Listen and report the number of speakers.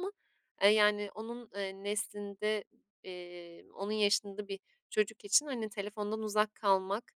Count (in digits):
1